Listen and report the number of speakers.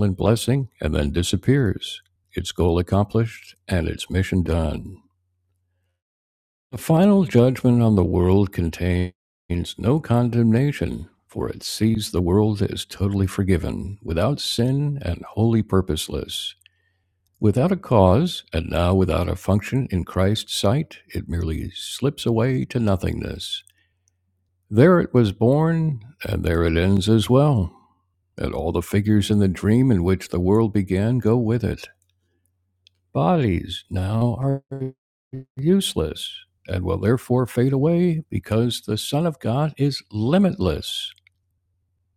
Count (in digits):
1